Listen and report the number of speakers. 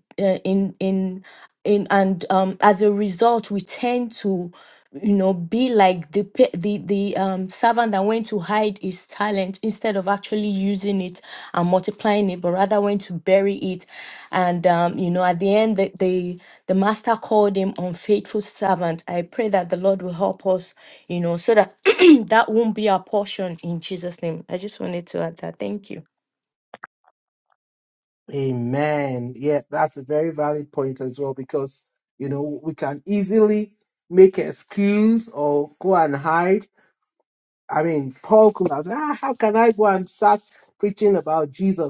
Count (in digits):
2